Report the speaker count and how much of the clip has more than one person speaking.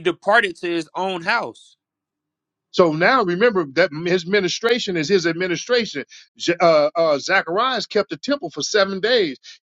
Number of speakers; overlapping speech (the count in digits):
2, no overlap